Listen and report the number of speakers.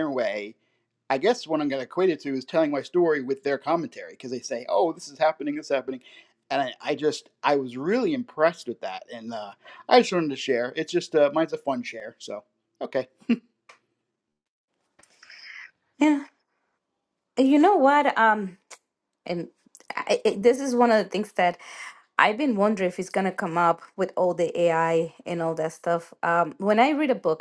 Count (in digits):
2